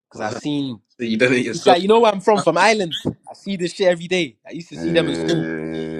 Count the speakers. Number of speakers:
three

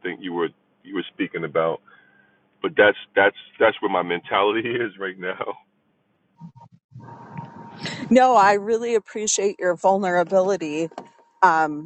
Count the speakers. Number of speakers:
two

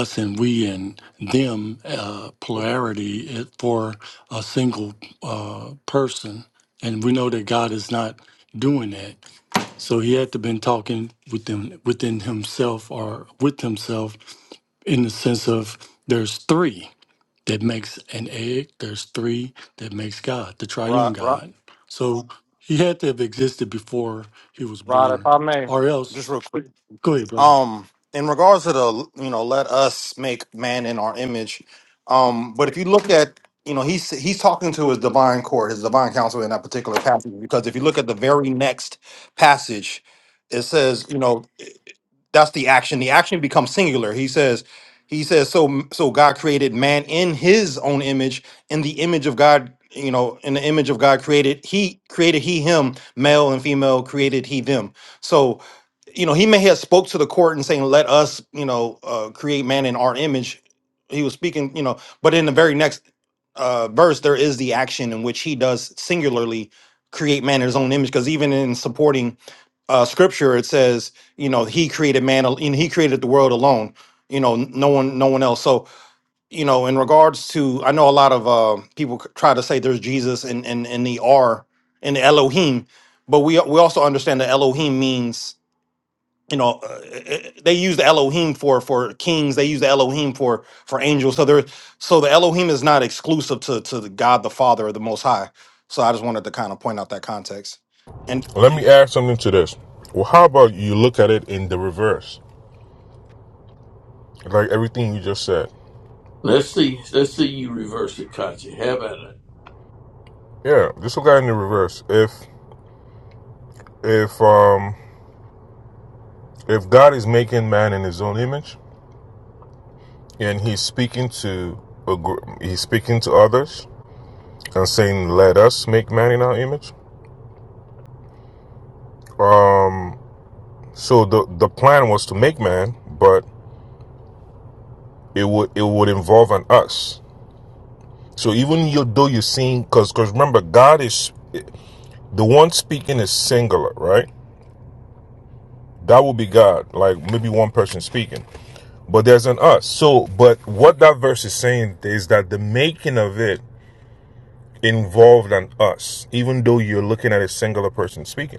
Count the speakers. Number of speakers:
four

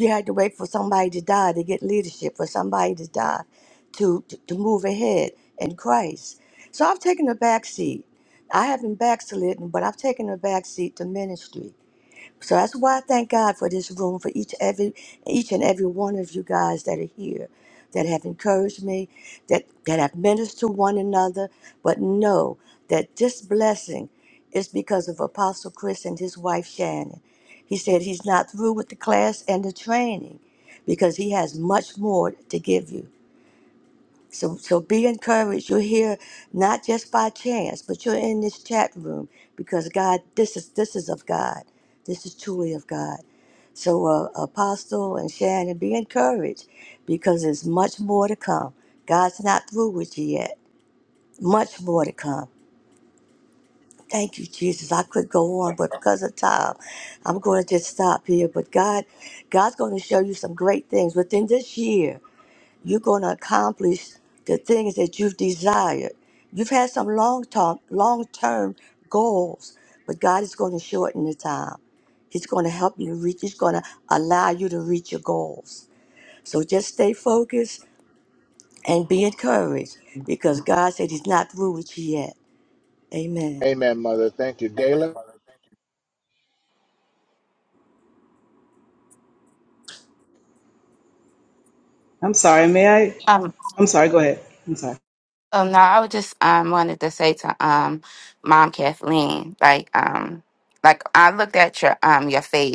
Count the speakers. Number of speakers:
four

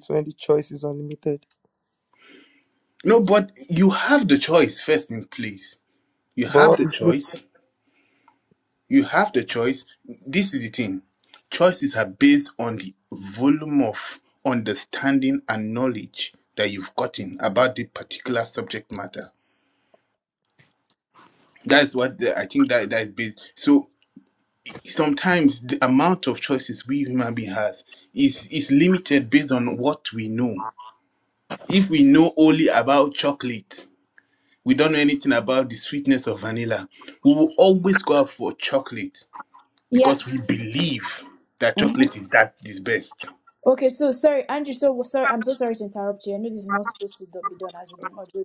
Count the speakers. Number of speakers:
three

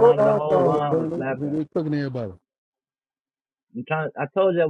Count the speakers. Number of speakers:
two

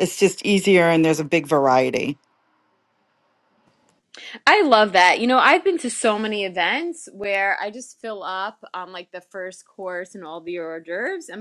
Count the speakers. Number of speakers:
two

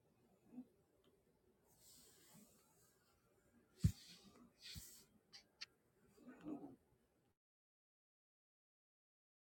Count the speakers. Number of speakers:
zero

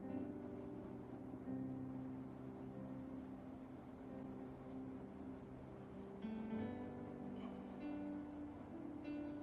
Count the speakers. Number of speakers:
zero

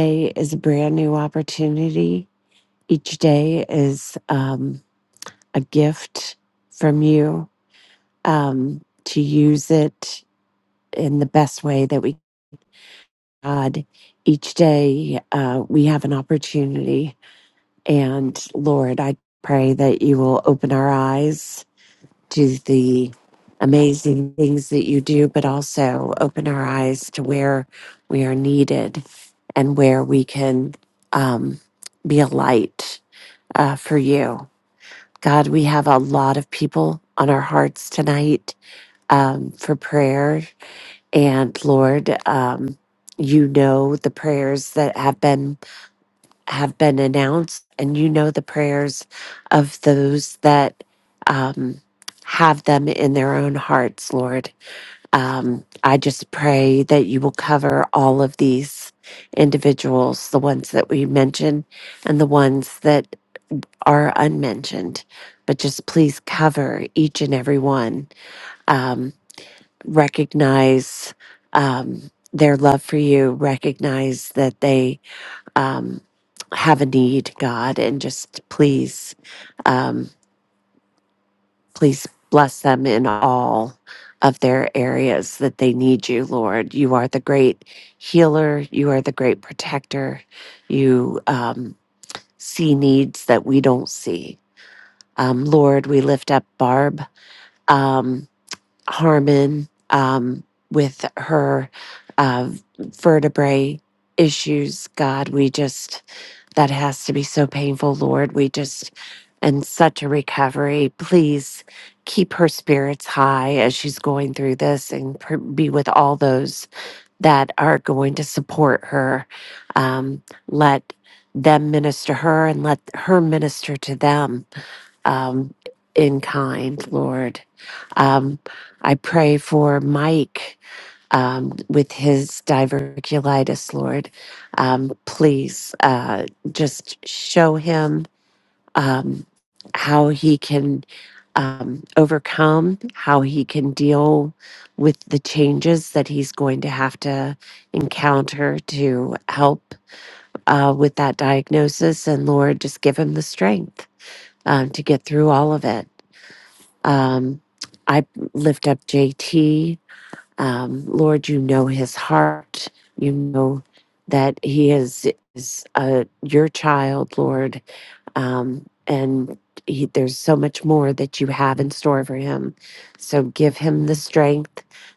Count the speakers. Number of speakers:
one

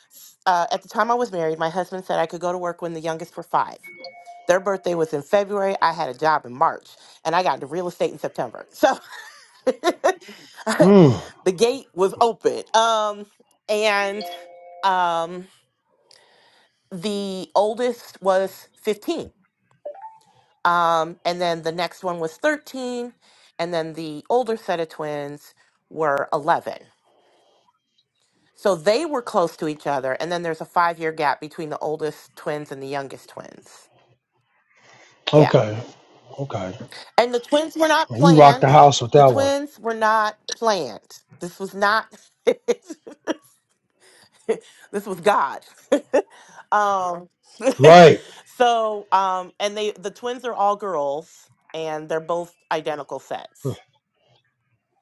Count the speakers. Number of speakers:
two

